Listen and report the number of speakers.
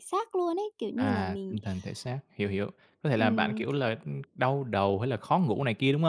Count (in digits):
2